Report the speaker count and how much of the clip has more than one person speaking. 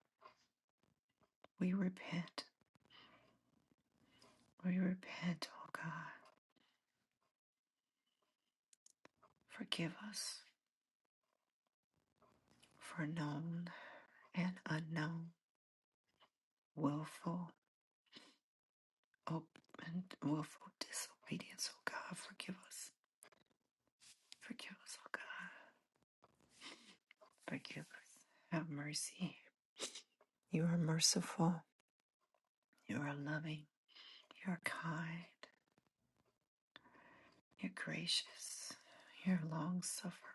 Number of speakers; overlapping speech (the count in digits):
1, no overlap